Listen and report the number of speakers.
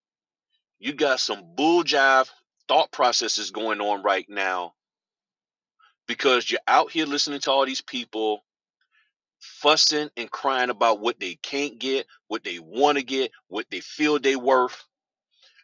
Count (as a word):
one